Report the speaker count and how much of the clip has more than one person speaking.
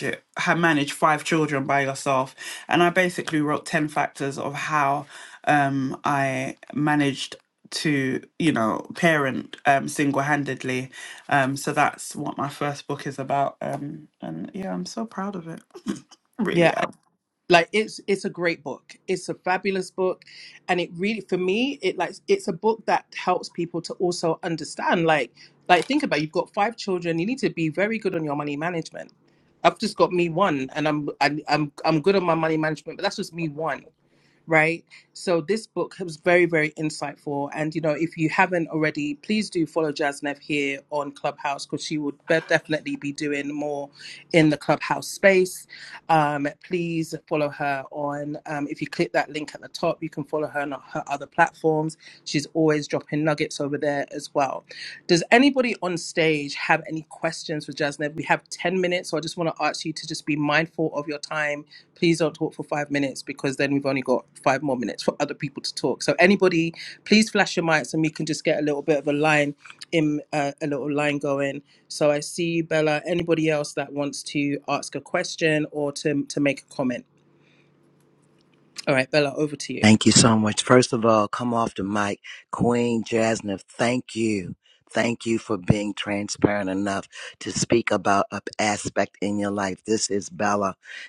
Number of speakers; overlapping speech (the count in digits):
3, under 1%